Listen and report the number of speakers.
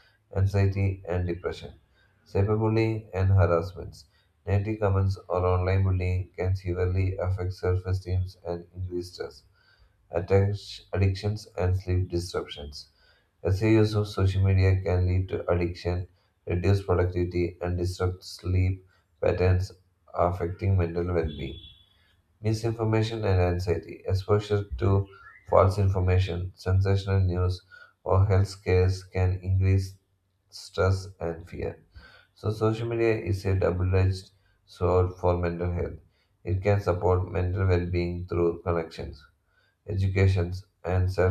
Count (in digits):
1